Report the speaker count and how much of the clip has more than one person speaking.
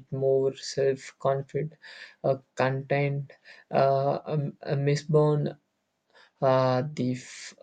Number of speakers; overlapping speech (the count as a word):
one, no overlap